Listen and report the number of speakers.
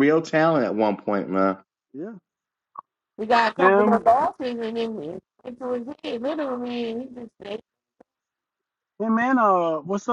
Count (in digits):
3